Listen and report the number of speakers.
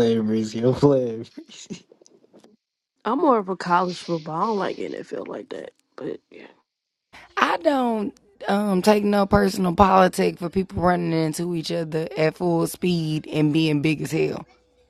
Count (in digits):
3